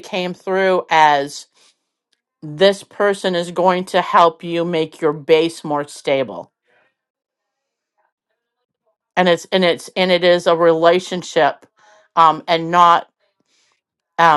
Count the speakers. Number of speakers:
1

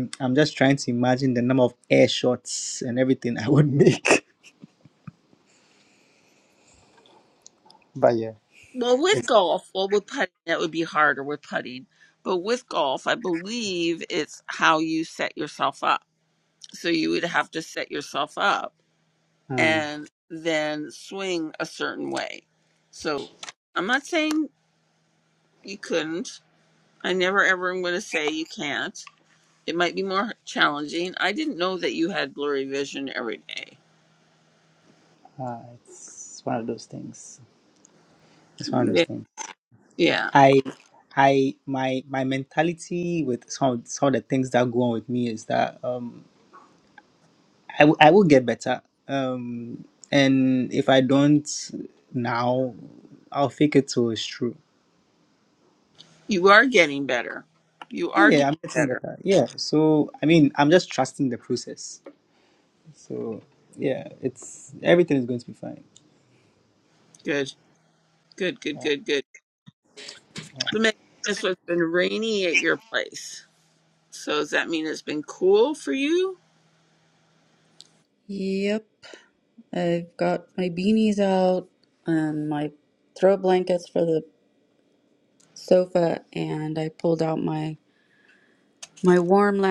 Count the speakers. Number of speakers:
3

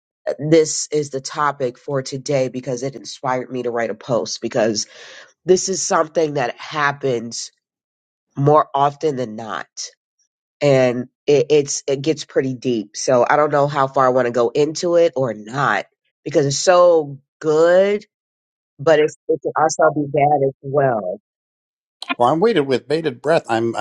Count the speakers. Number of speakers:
2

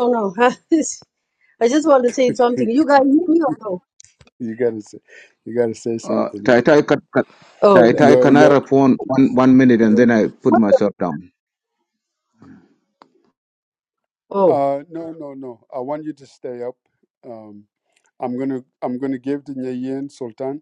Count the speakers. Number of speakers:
3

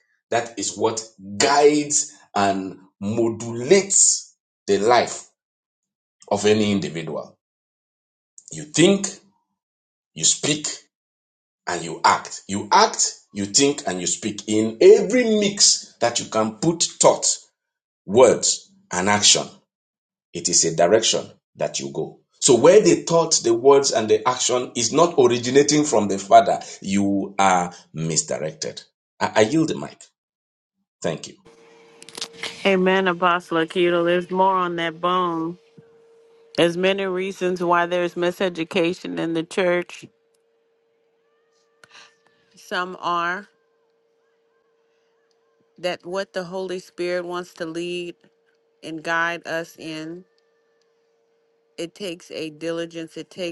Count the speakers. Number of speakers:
2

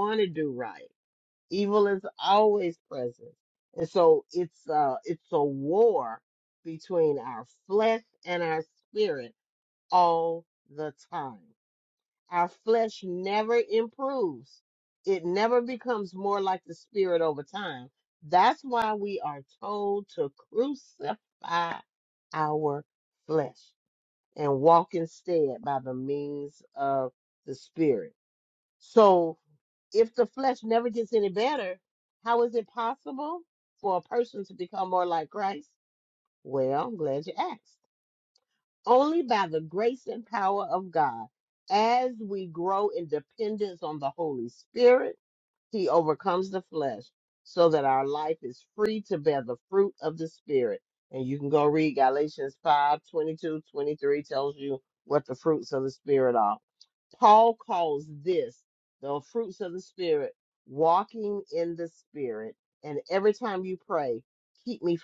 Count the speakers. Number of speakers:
1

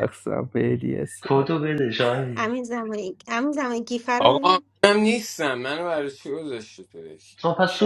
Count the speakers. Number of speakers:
4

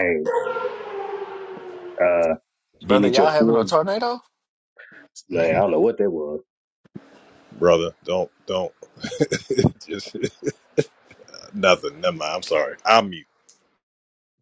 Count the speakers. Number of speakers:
3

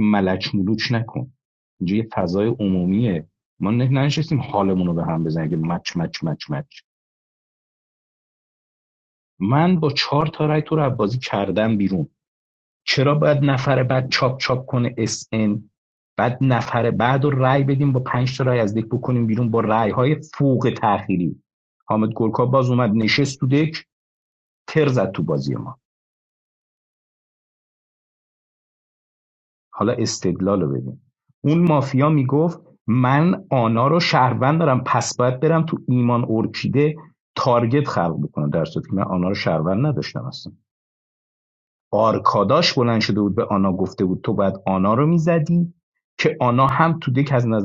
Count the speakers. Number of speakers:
1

